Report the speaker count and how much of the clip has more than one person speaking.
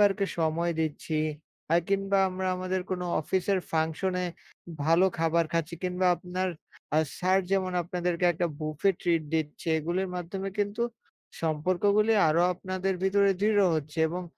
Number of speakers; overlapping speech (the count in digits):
1, no overlap